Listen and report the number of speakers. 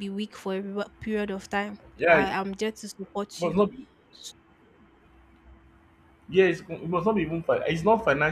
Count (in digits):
2